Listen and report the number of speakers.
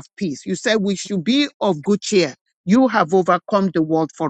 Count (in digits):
1